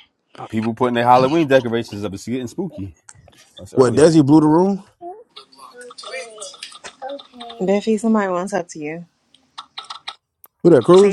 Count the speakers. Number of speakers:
three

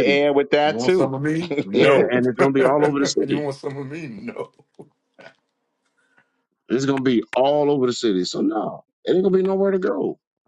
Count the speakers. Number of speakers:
three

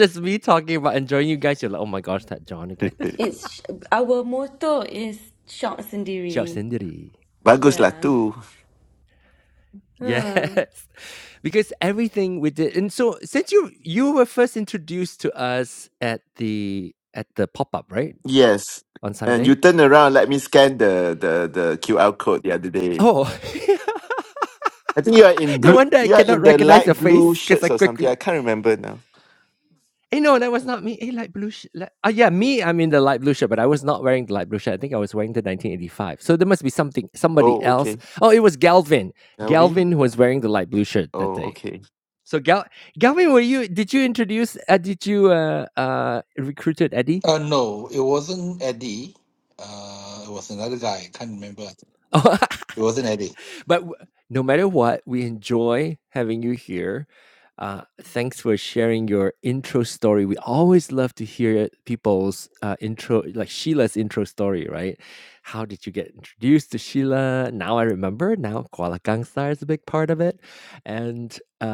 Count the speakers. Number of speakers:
four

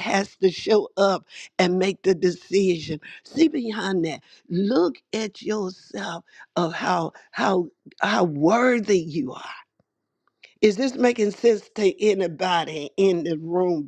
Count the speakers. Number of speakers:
one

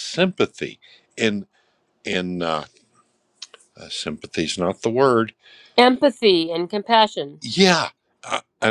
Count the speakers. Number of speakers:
two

